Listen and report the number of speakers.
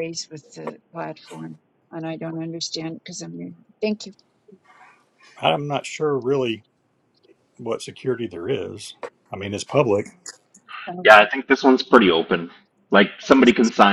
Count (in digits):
3